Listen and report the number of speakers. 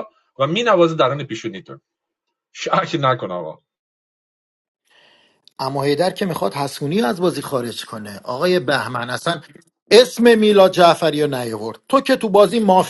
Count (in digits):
2